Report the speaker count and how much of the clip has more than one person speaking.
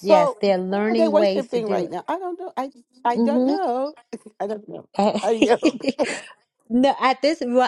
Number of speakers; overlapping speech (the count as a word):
two, about 29%